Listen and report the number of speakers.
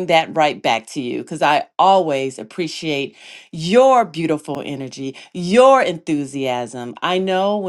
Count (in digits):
1